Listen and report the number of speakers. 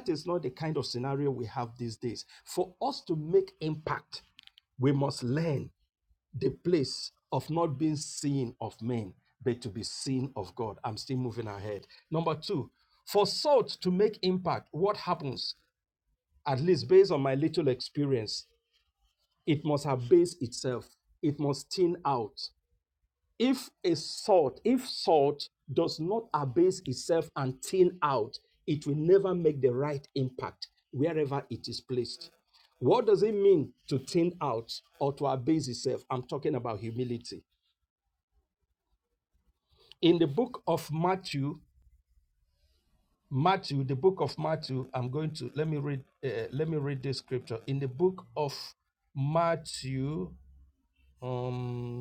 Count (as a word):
one